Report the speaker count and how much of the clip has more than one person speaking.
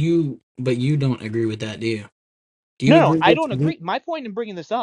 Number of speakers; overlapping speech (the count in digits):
2, about 14%